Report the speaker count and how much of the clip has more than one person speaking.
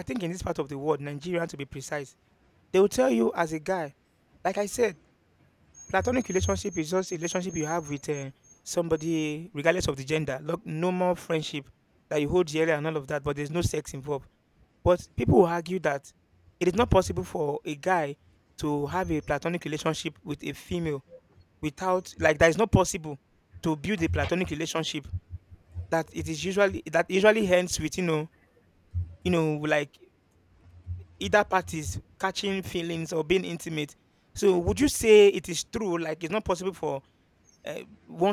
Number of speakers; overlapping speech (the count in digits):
1, no overlap